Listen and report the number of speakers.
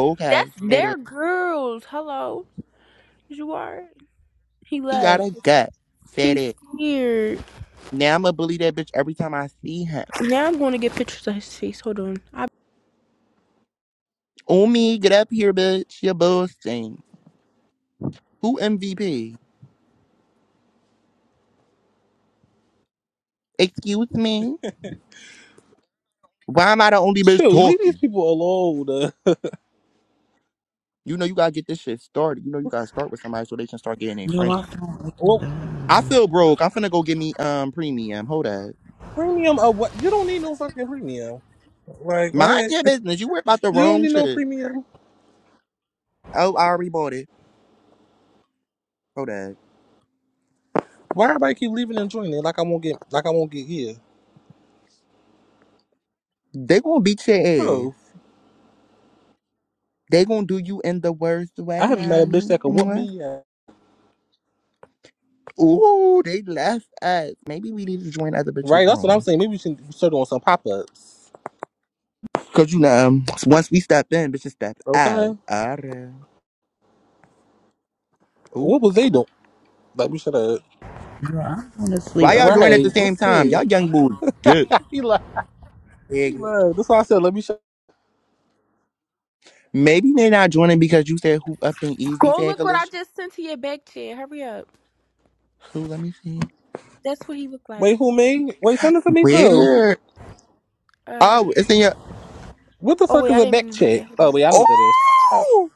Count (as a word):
four